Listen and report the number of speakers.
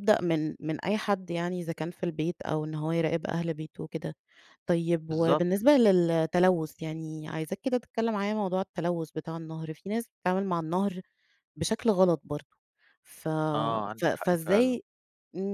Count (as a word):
two